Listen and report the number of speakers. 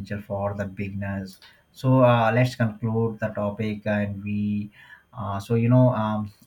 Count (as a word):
one